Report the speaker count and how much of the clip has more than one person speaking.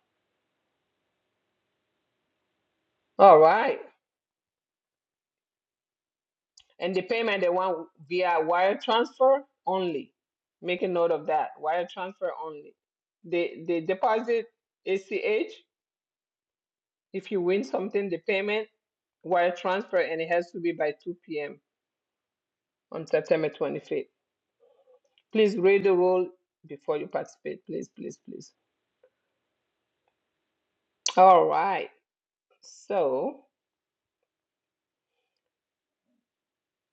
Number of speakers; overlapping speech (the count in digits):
1, no overlap